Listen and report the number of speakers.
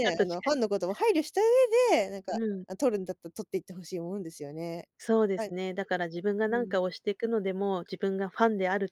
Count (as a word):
two